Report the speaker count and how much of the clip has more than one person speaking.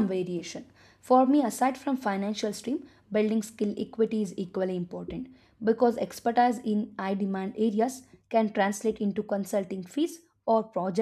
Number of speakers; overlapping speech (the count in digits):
1, no overlap